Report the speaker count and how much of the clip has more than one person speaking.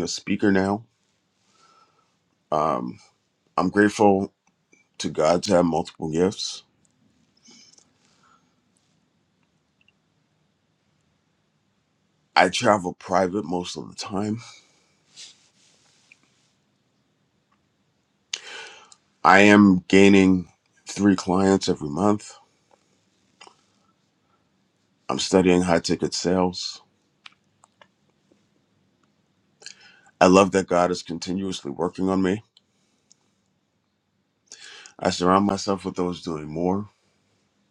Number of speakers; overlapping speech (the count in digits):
1, no overlap